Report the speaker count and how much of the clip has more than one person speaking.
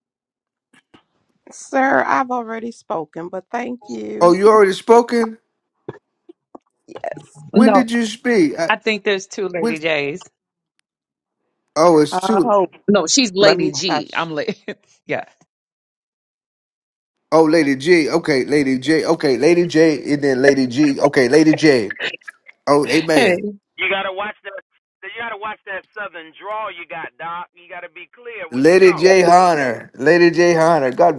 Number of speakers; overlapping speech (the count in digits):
4, about 11%